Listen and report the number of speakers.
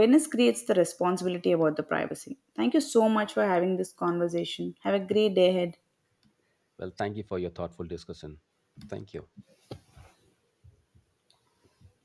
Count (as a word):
two